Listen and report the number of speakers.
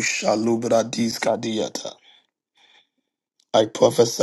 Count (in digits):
1